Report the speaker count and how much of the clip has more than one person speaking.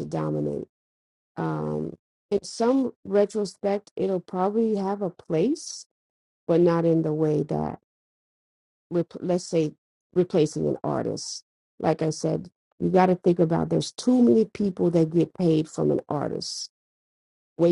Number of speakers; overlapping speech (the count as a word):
one, no overlap